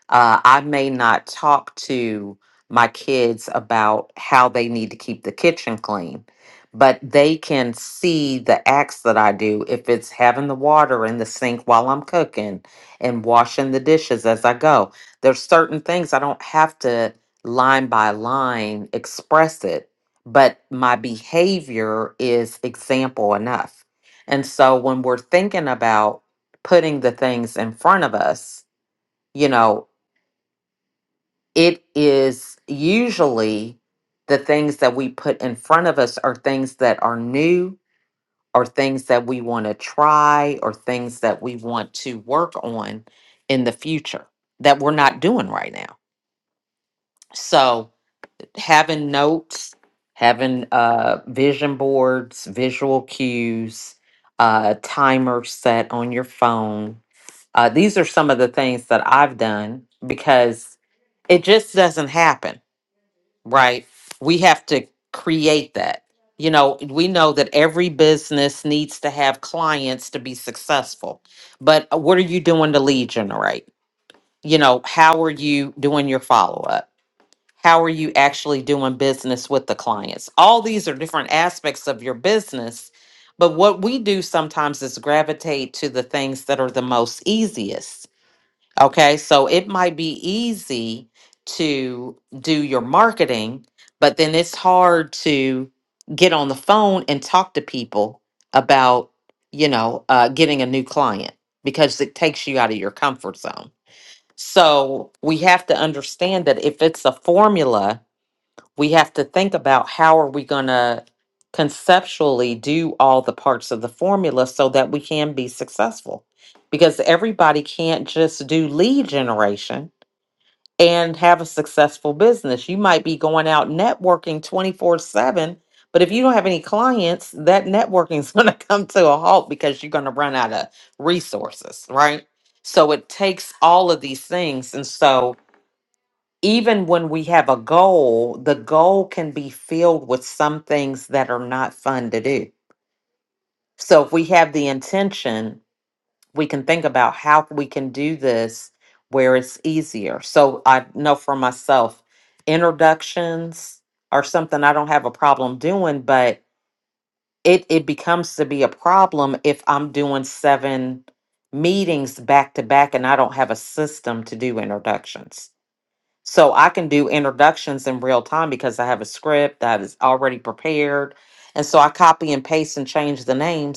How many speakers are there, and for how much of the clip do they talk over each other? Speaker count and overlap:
one, no overlap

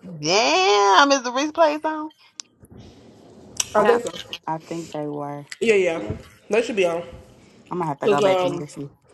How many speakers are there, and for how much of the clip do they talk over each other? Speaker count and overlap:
three, about 10%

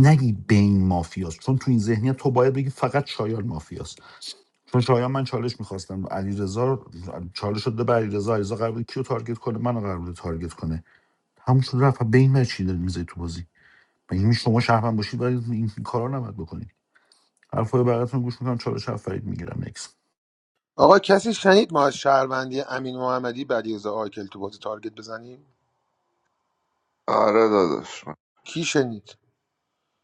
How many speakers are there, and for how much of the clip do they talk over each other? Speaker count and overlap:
three, no overlap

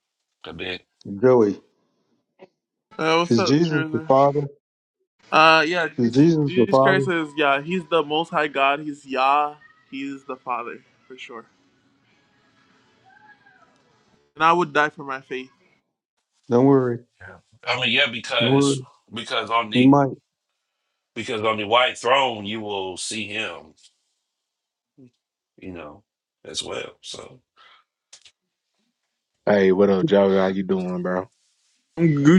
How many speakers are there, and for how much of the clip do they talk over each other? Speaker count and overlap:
four, about 8%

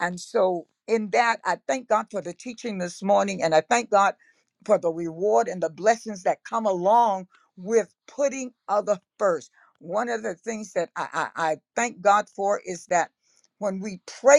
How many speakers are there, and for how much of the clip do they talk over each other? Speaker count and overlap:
one, no overlap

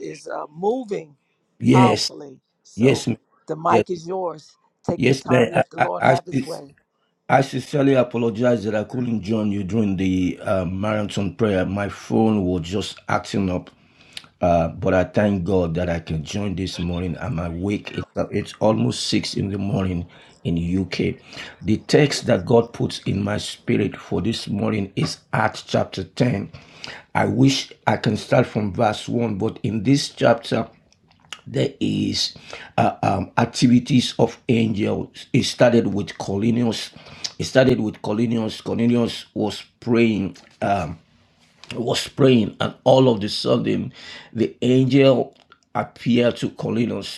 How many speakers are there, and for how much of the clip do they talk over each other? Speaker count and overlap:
two, about 5%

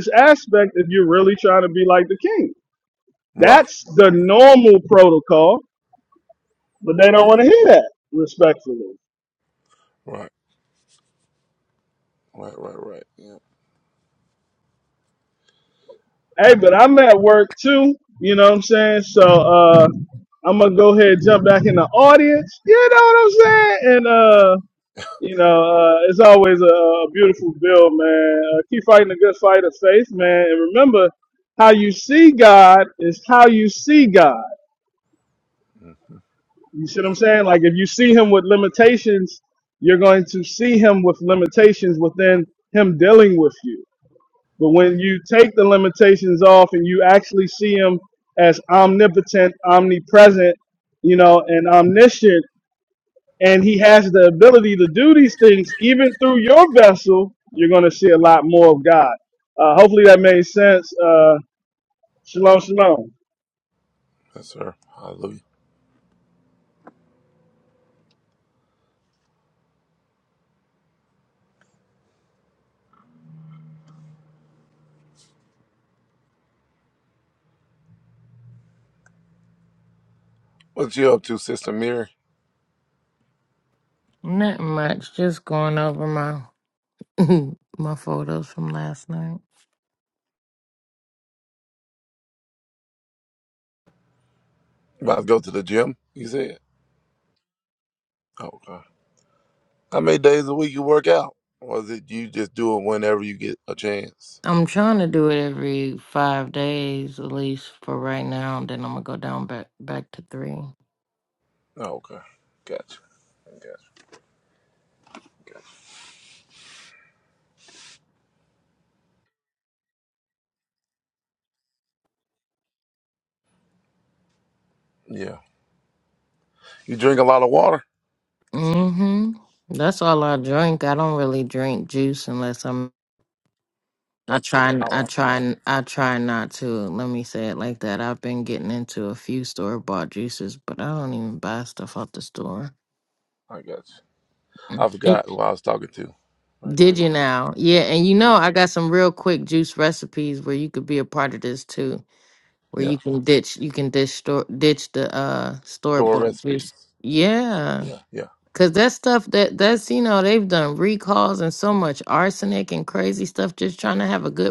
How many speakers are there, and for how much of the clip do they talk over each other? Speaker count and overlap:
three, about 2%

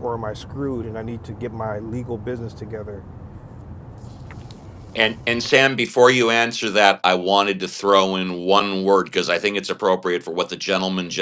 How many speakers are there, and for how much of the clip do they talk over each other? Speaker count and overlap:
two, no overlap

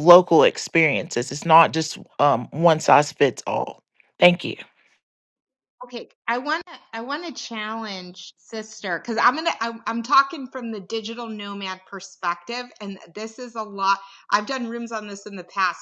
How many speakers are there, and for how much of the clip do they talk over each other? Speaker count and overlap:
two, no overlap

